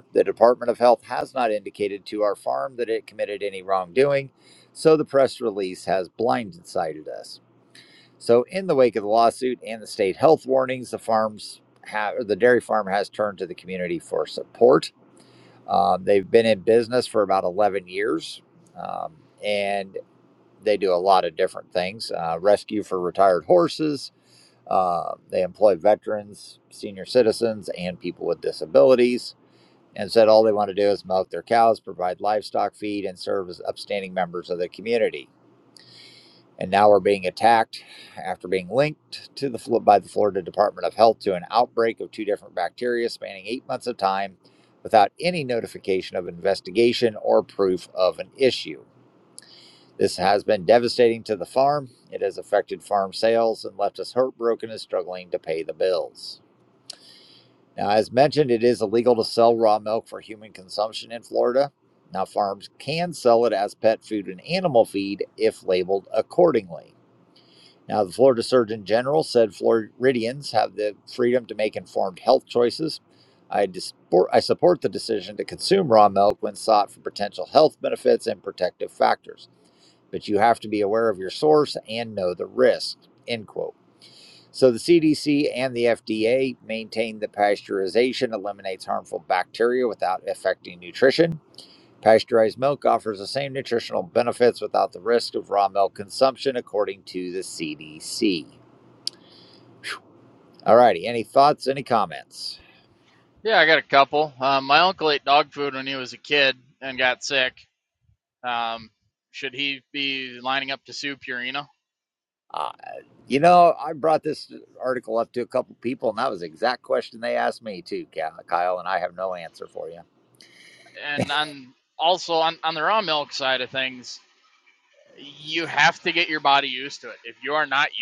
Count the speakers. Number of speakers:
2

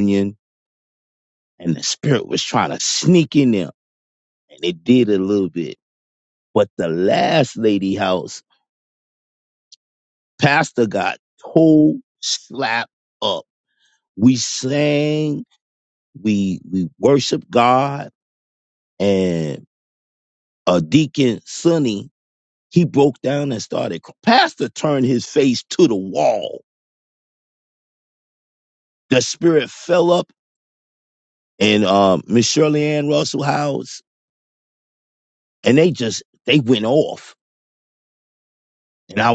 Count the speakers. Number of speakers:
1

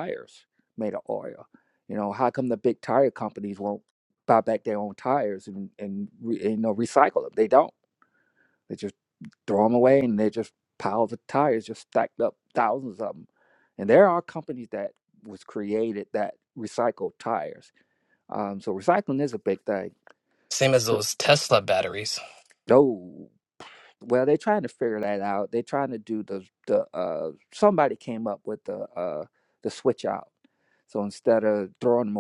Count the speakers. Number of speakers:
2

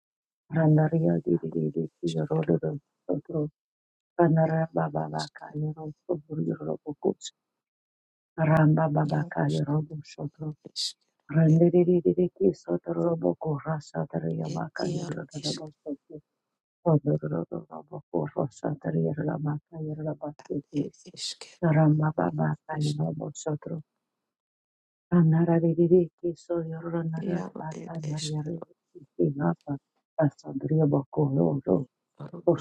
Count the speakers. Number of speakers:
2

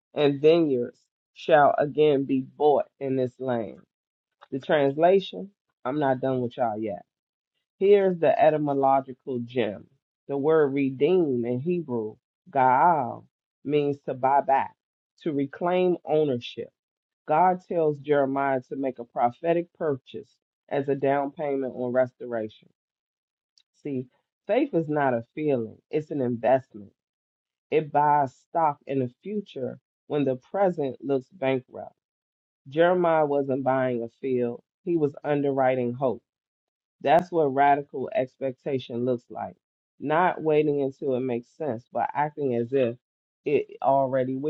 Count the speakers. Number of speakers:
1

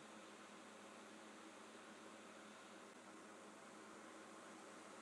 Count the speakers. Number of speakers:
0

